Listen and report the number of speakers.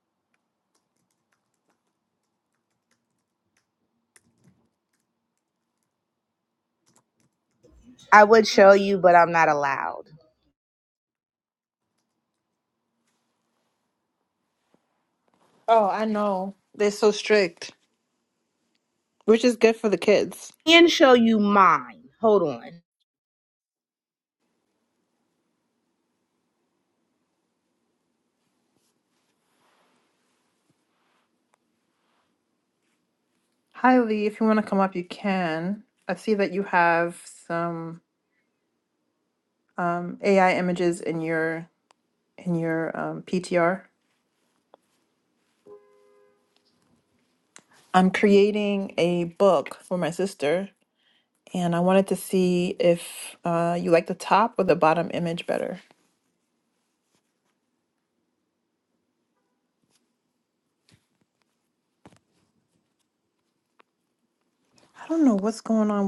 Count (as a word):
two